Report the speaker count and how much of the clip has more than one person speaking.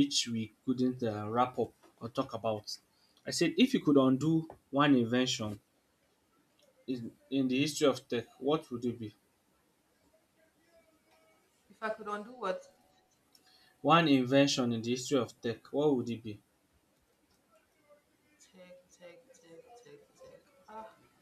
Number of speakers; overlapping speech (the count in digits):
2, no overlap